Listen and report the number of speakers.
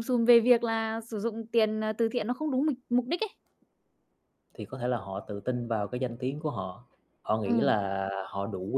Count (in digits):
2